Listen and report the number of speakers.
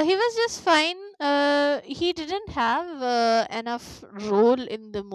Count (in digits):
1